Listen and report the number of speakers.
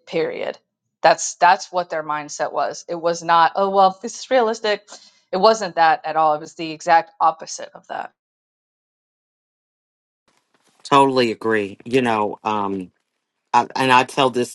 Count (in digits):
2